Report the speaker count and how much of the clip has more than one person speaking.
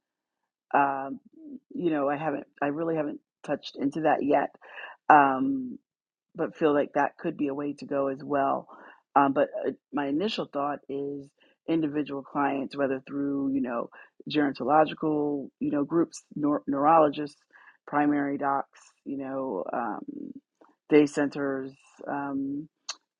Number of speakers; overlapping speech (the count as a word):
one, no overlap